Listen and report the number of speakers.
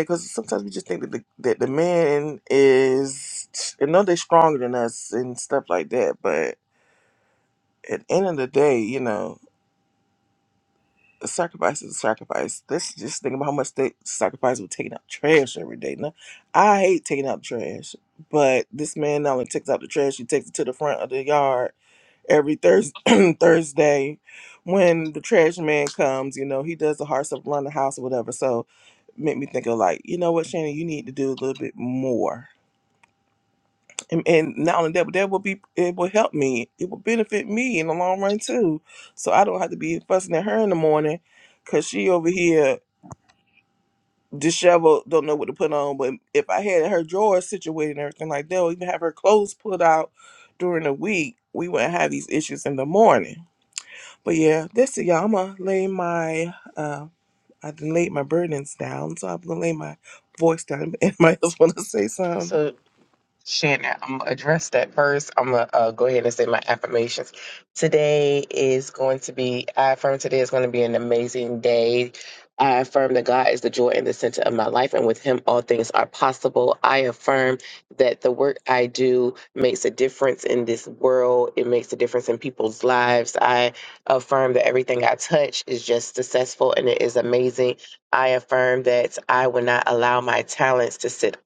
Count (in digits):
2